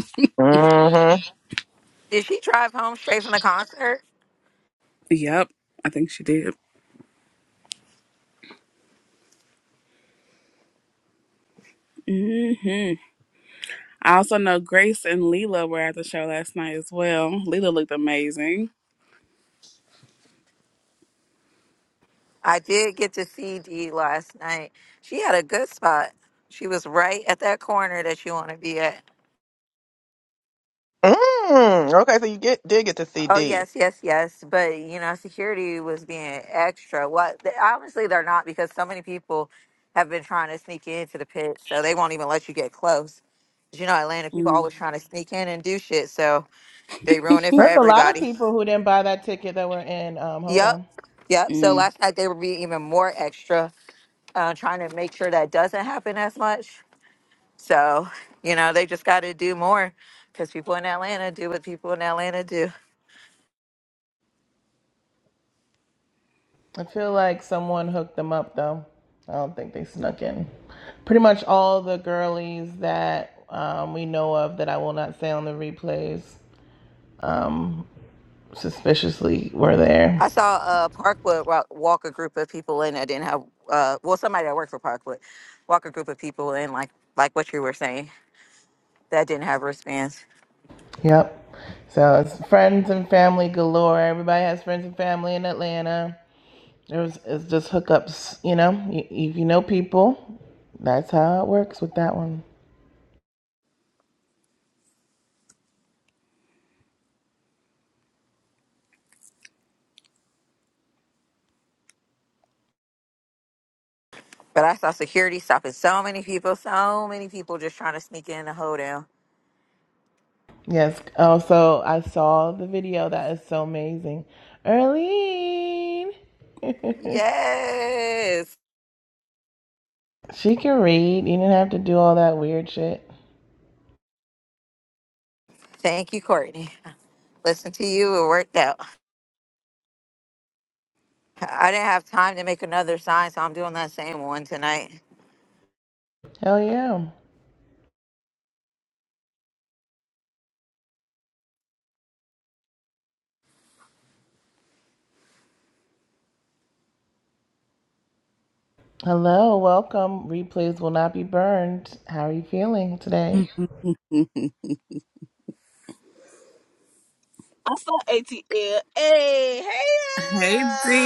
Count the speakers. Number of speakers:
5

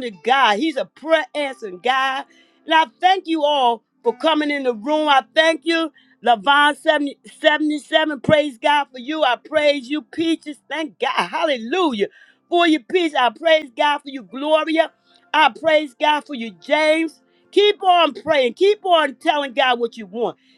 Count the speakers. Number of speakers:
1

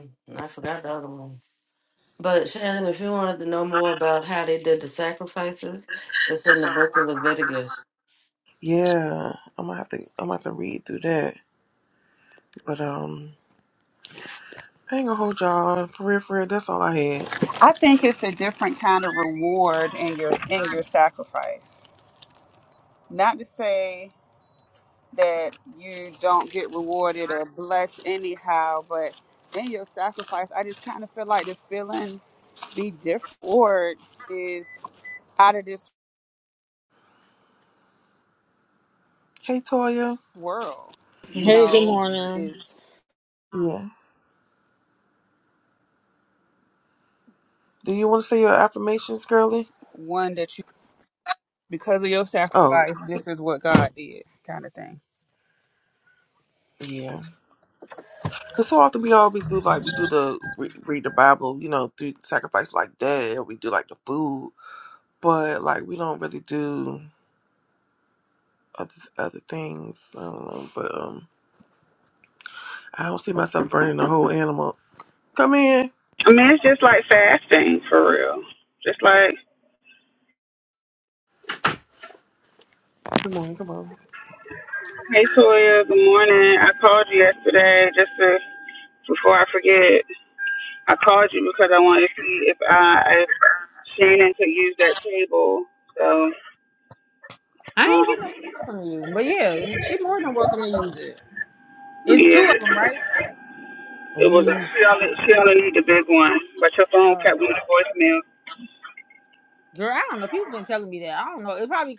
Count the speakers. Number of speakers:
4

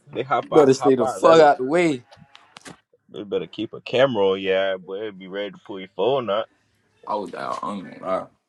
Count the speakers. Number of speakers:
3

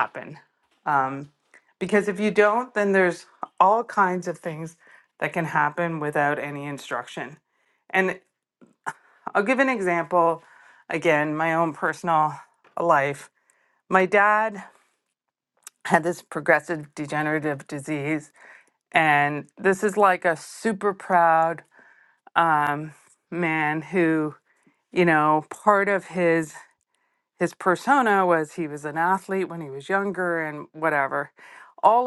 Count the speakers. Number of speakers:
1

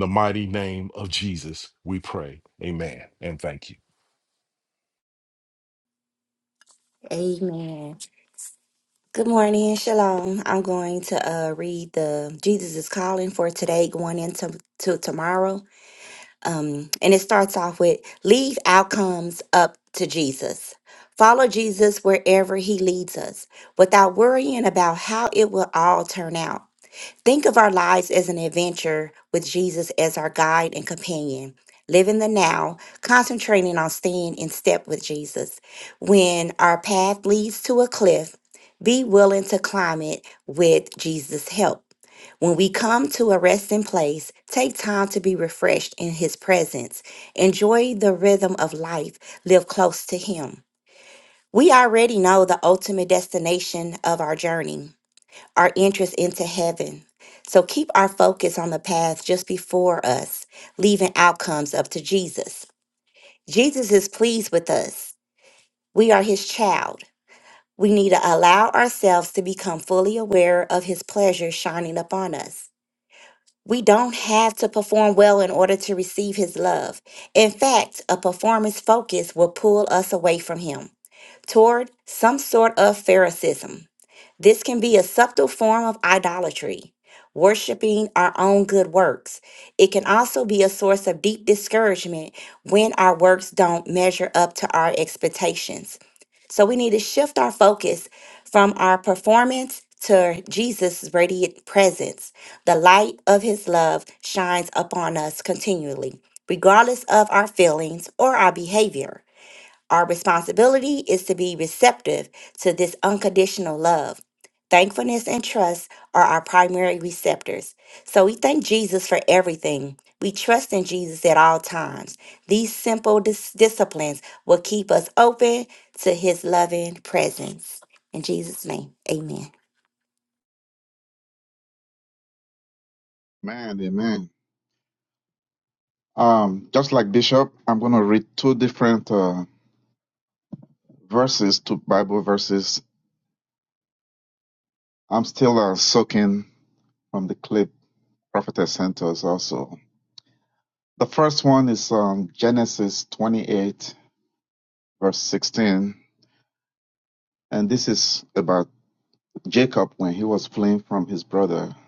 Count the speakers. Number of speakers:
3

